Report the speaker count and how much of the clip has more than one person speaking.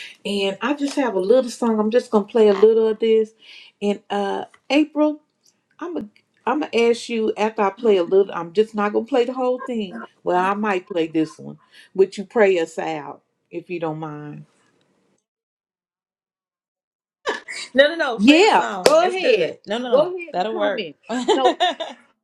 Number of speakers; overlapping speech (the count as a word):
two, about 11%